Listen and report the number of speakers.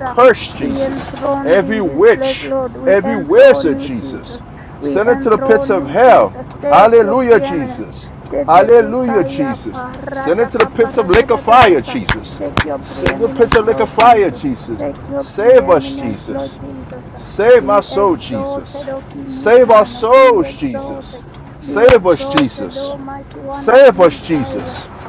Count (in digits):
2